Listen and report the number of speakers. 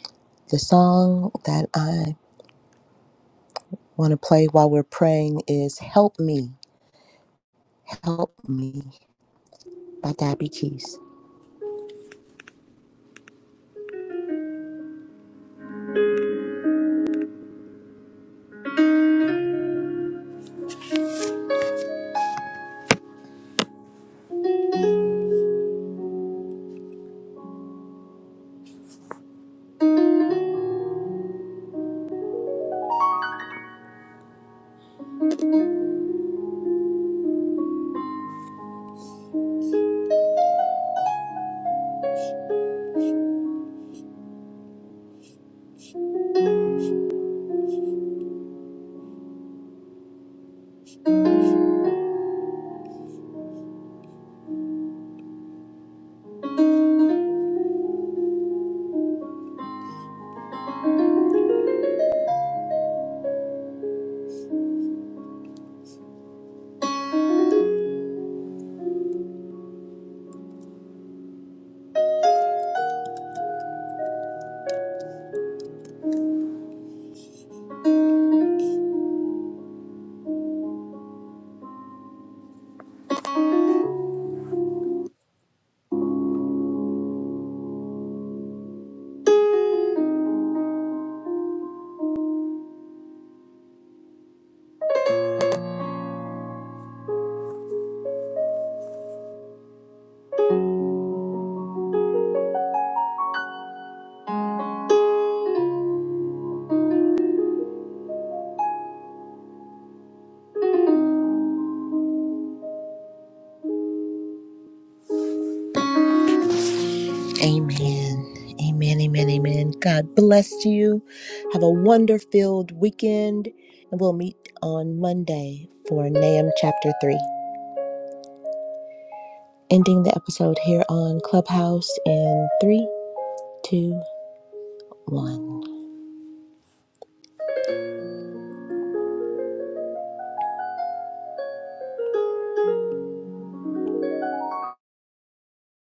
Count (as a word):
one